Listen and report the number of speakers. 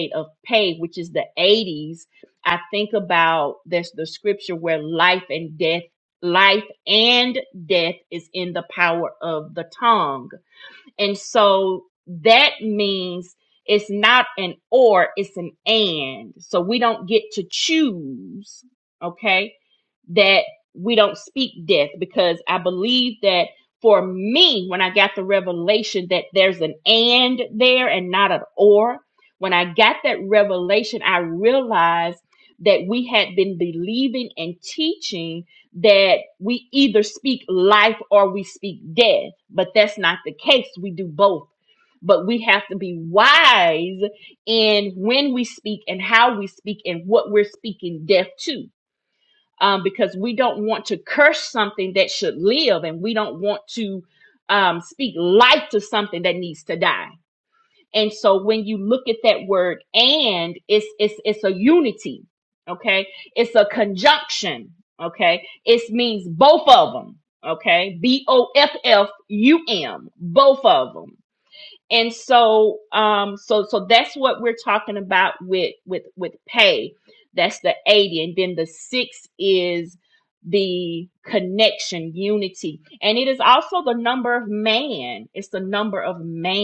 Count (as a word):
one